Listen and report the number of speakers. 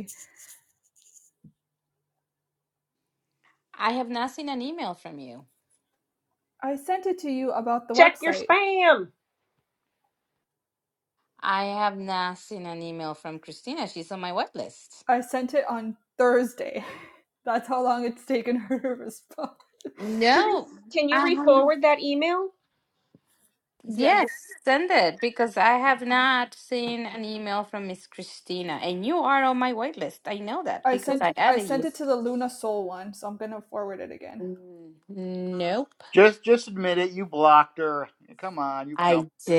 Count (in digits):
4